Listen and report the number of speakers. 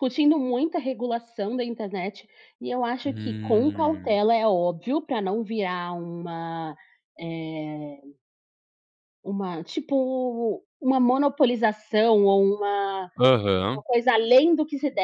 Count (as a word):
two